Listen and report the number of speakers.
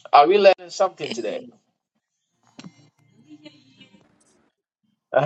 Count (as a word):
one